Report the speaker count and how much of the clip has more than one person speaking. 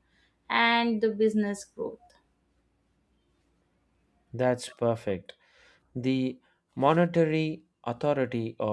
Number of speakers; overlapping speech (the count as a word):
two, no overlap